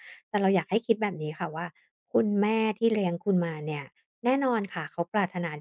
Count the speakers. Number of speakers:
1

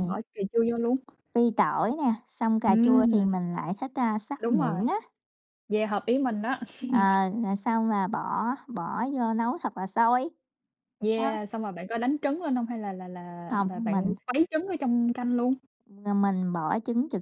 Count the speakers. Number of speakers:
2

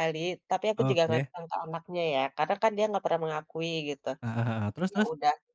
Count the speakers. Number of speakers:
2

